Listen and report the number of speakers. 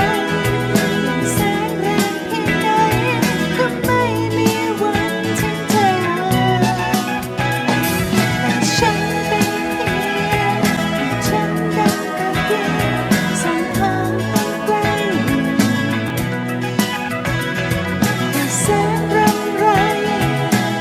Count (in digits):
1